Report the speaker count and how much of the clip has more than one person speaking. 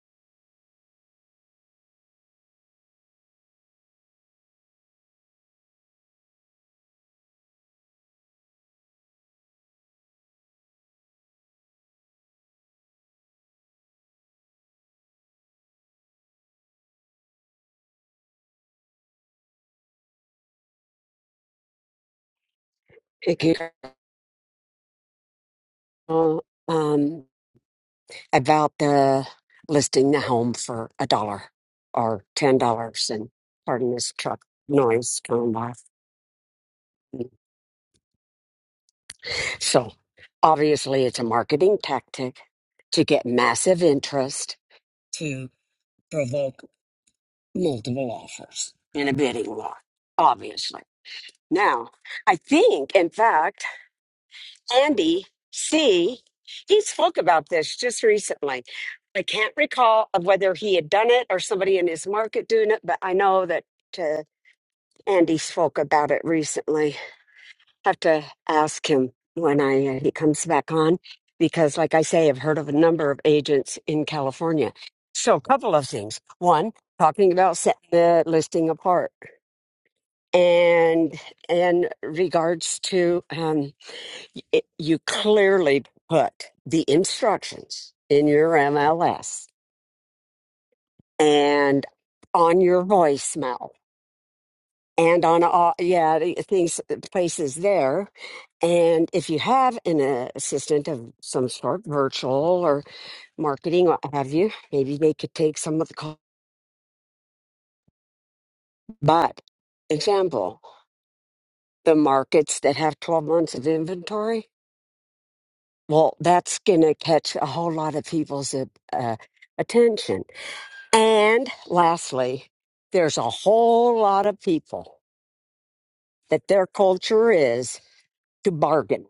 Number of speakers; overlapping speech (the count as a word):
one, no overlap